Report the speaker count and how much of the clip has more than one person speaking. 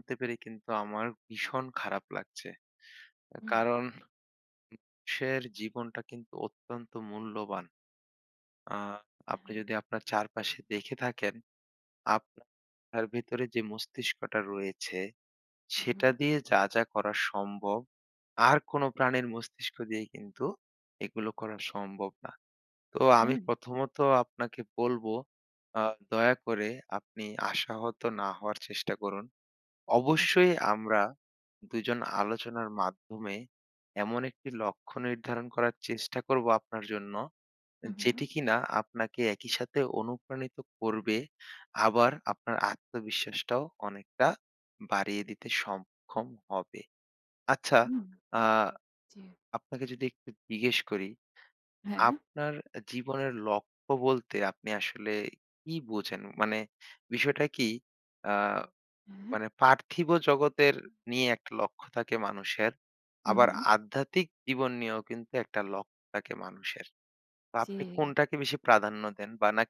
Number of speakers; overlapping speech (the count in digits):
2, about 2%